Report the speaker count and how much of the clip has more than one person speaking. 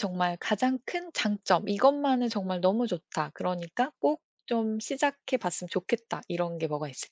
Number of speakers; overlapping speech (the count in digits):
1, no overlap